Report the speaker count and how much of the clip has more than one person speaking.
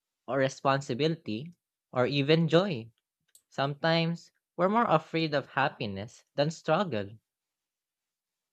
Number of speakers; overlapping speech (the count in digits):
1, no overlap